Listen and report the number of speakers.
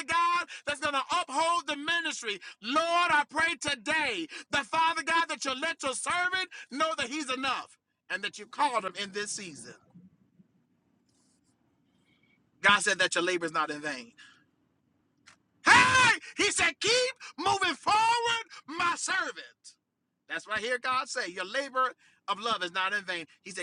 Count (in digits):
1